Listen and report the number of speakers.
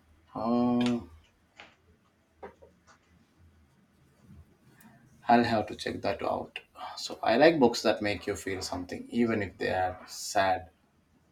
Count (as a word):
one